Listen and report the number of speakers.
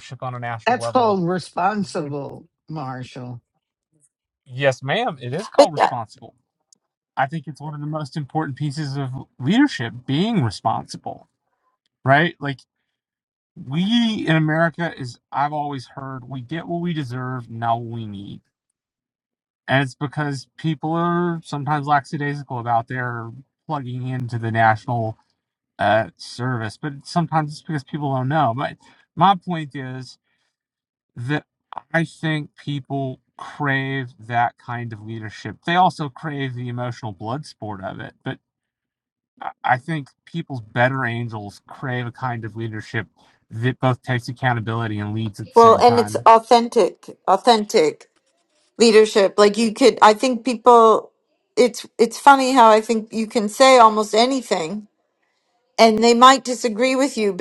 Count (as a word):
three